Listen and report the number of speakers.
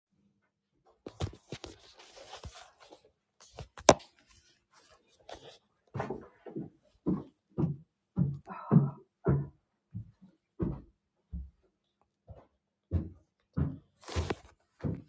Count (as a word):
zero